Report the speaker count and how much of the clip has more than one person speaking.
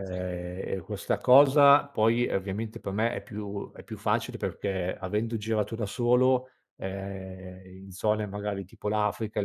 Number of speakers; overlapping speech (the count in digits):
1, no overlap